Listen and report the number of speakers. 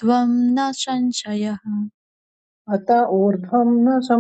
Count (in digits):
2